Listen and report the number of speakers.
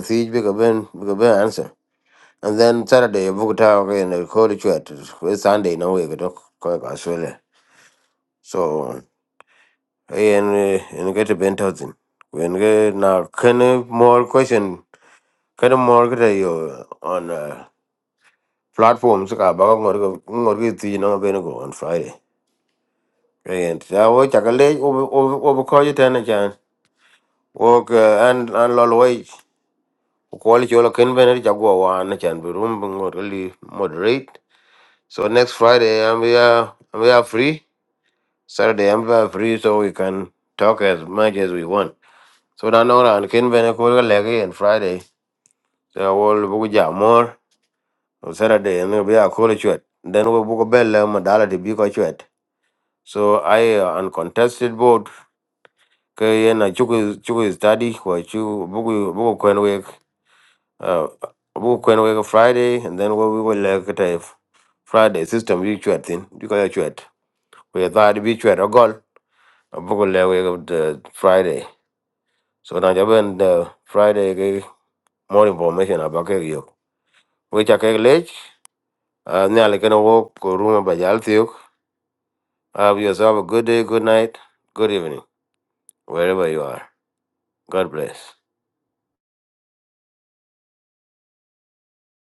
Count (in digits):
1